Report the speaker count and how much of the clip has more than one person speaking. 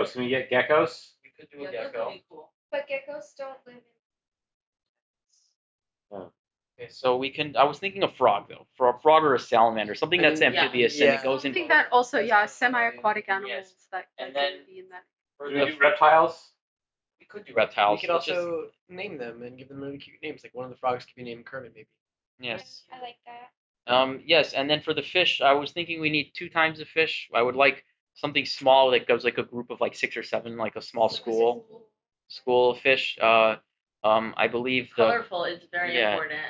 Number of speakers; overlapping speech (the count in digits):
6, about 20%